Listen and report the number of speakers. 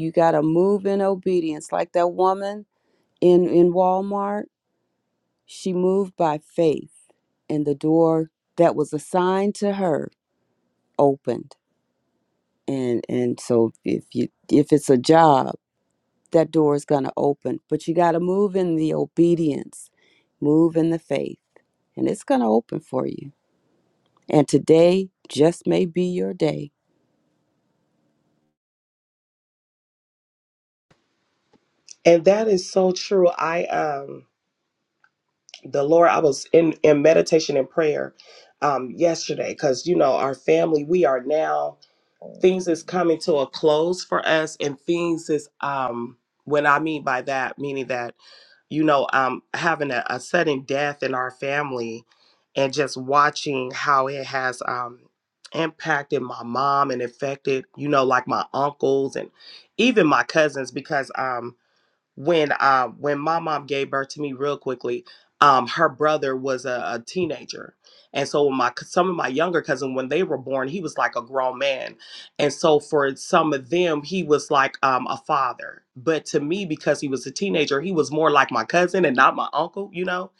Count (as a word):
two